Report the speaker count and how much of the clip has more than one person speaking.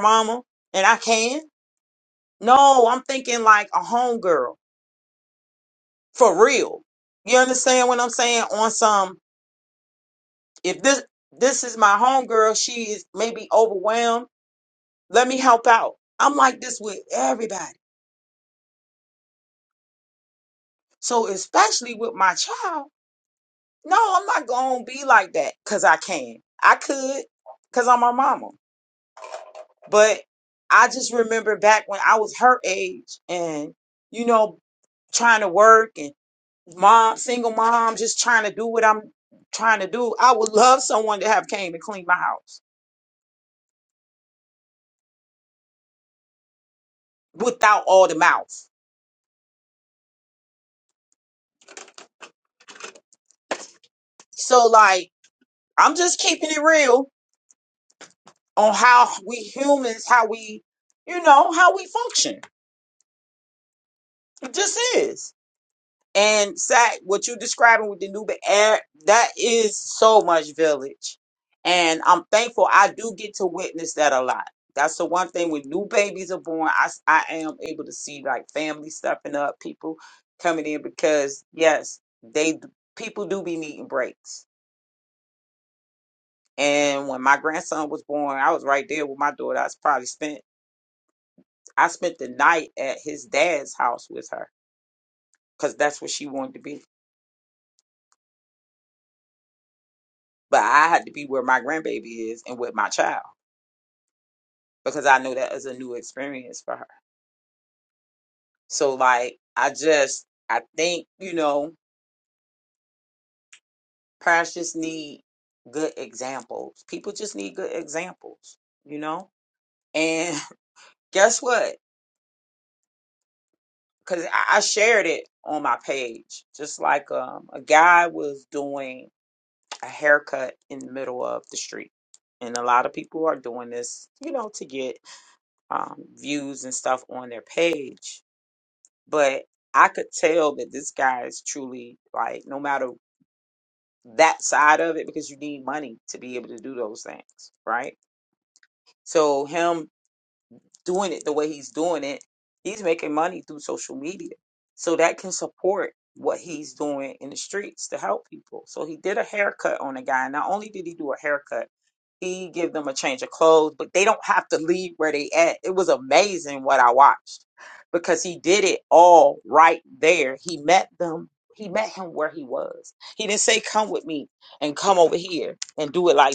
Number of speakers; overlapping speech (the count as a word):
one, no overlap